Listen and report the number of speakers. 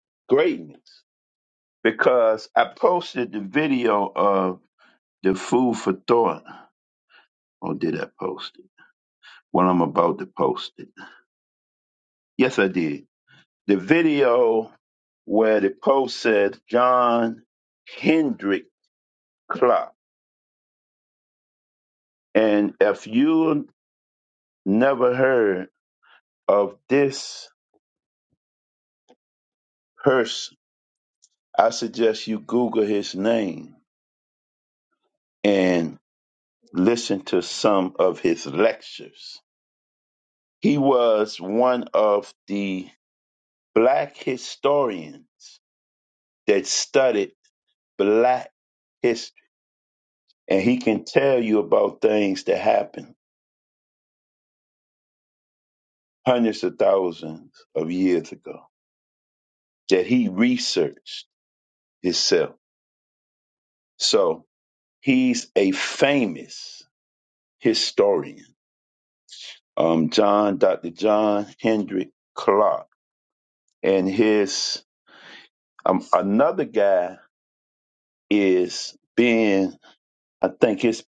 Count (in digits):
1